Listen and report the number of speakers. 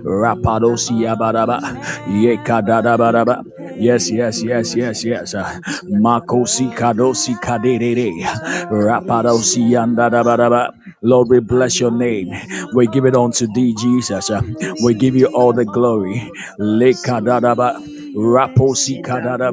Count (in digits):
2